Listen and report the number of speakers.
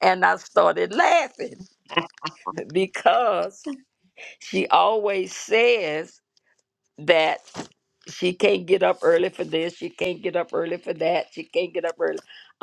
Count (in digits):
1